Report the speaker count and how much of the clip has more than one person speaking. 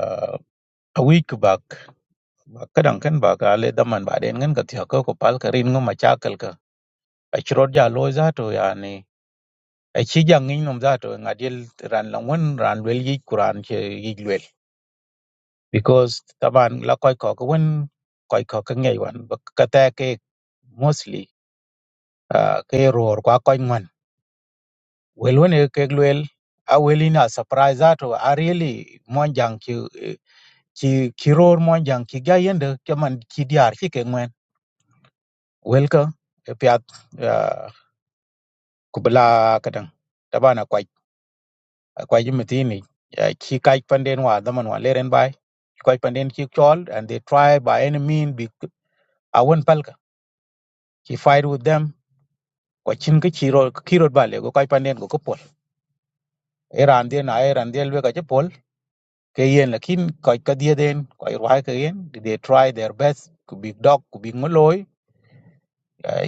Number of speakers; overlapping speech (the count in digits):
1, no overlap